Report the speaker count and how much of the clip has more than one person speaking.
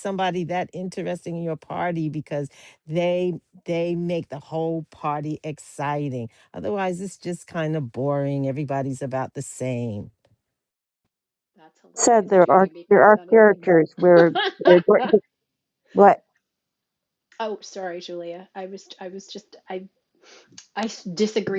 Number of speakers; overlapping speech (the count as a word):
three, about 9%